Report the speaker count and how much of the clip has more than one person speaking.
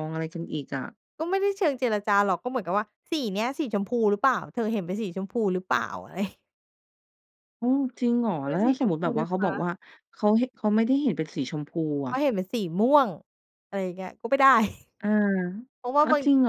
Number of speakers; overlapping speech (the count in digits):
2, about 9%